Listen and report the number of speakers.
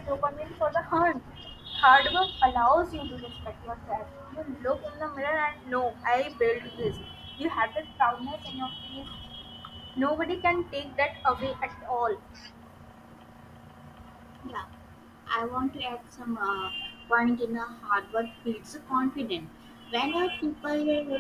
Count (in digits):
2